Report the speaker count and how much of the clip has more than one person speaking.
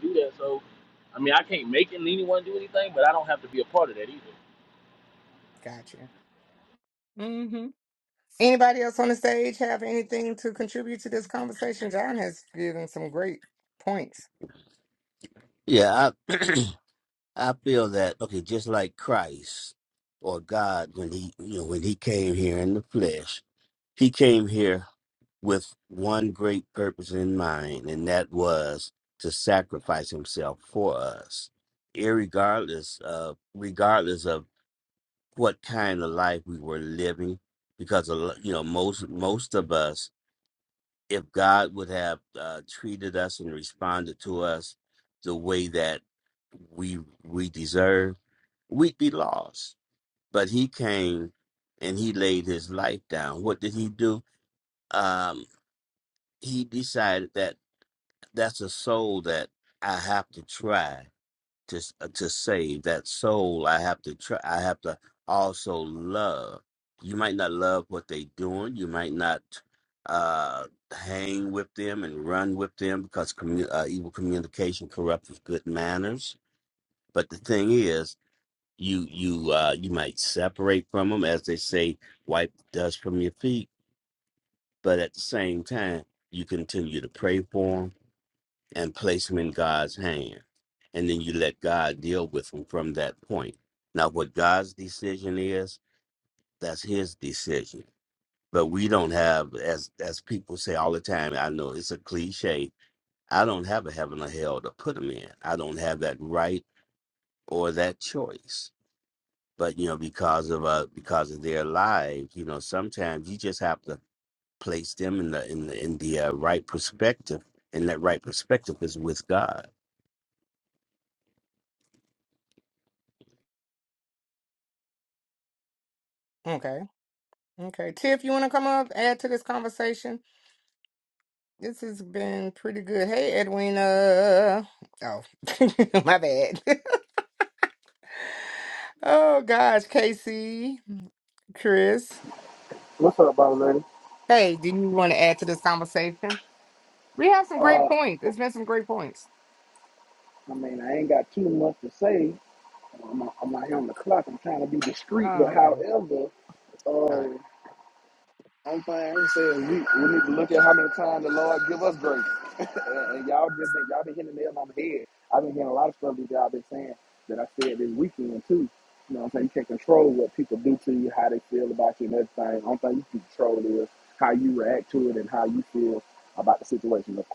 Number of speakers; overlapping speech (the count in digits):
4, about 1%